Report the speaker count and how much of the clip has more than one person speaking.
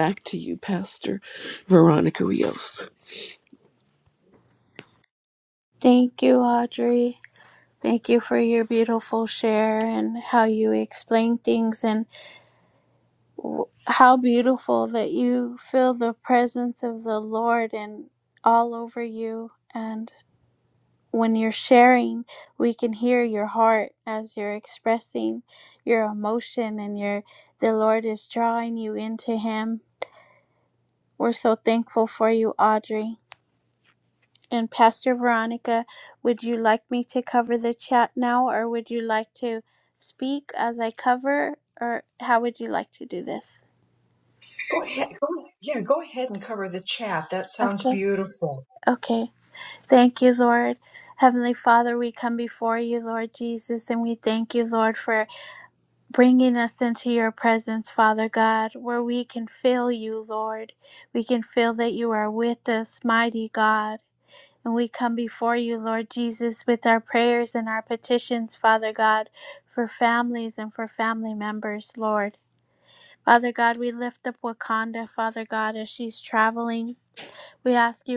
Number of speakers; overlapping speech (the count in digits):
3, about 1%